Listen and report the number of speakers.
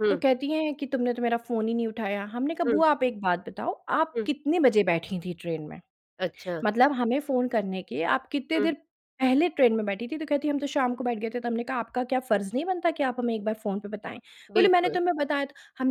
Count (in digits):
2